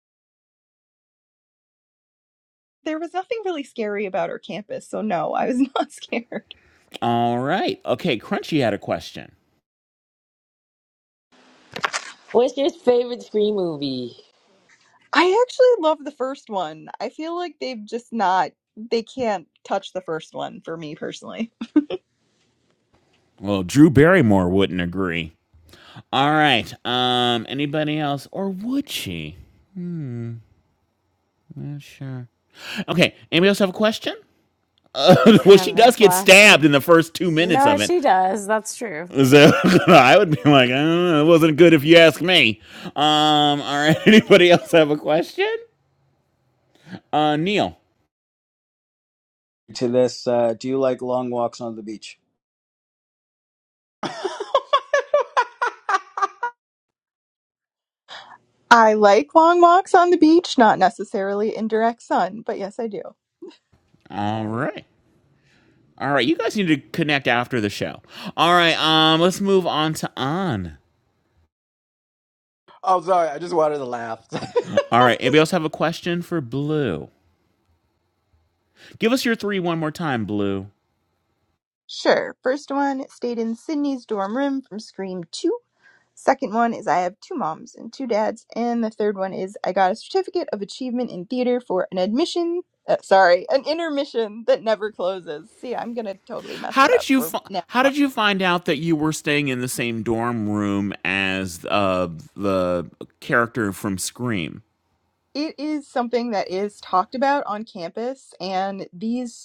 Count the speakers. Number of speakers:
six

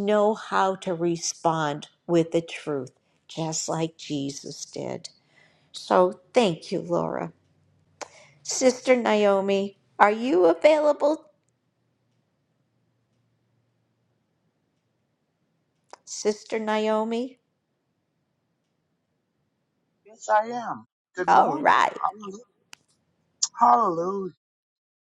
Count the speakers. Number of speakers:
two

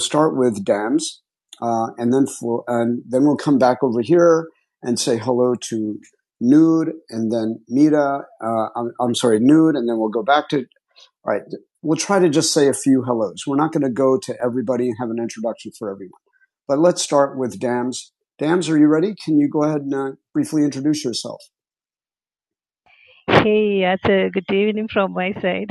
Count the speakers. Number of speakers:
two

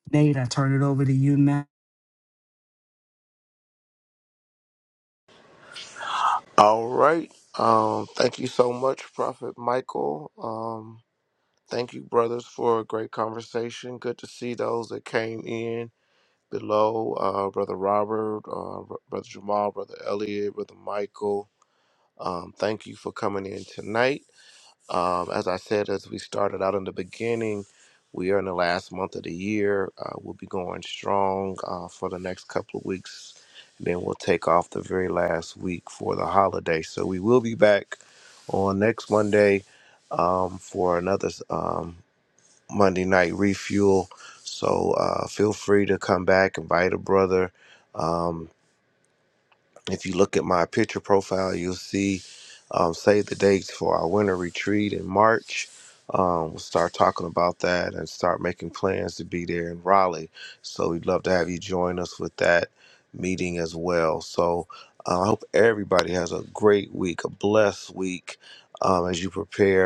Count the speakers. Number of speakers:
two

